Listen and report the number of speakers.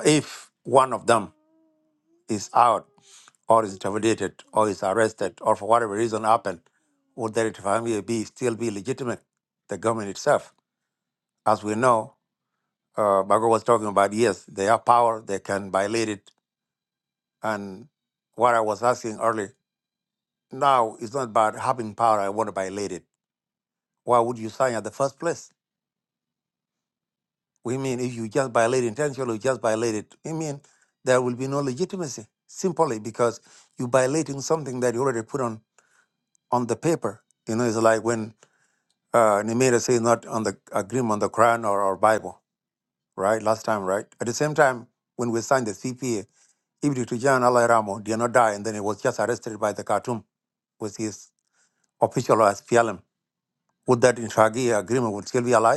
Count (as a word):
one